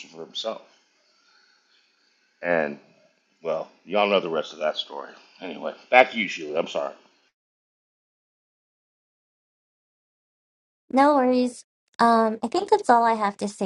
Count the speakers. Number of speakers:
two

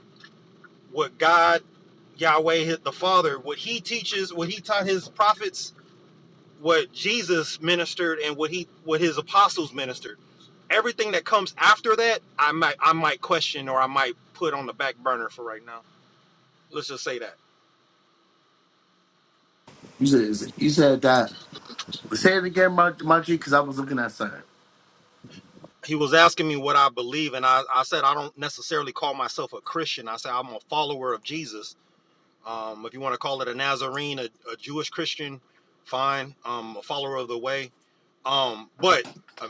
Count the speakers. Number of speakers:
two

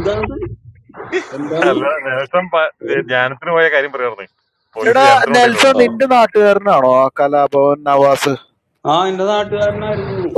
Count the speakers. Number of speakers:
three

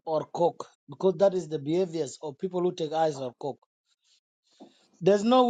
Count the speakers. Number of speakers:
one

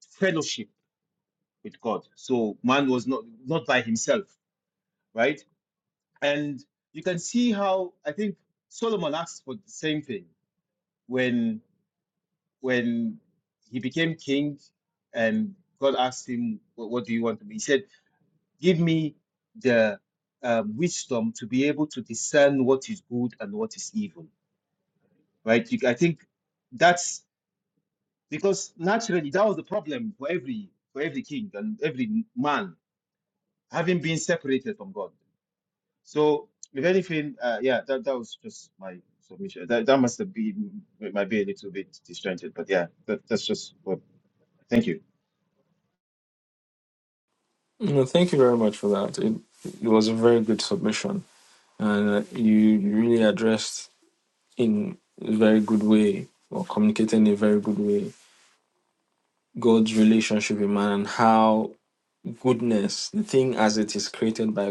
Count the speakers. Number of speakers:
two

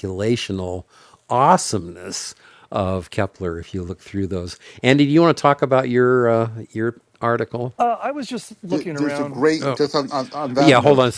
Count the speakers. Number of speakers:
three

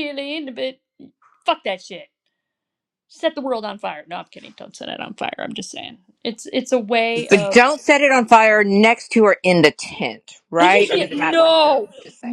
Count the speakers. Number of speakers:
two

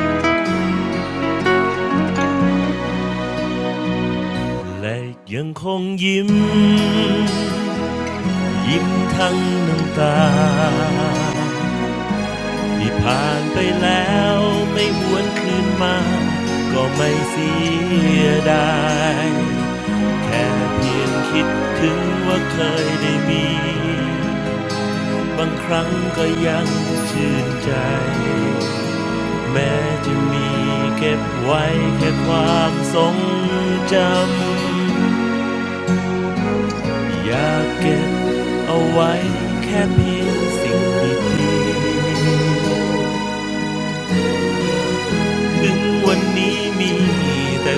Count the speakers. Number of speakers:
one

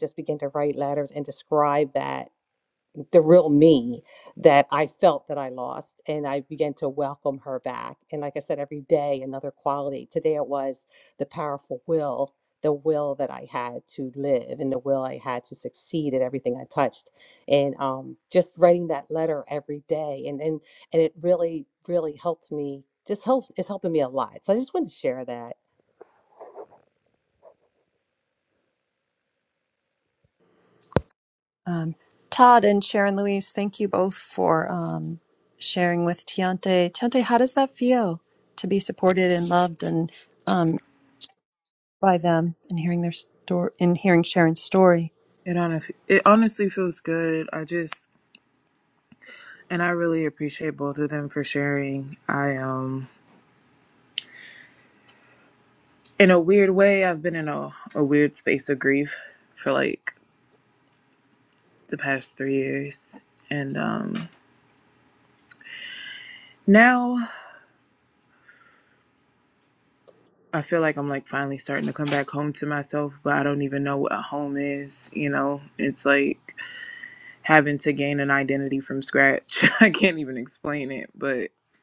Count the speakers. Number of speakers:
three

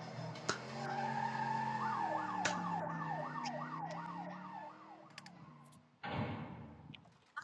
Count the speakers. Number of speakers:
zero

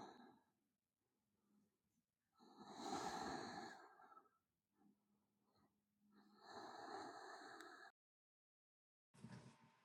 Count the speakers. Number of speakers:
zero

